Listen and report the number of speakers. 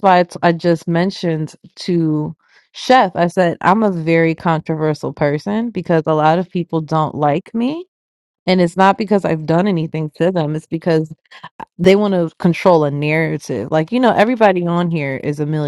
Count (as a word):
one